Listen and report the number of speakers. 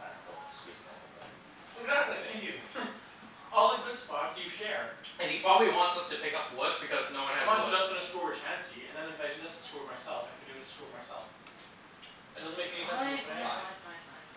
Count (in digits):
3